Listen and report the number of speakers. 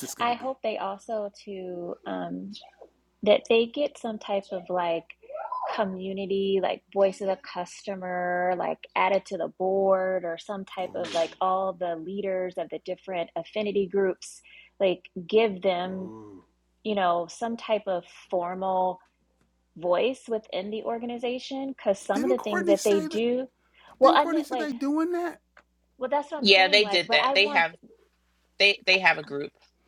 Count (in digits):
3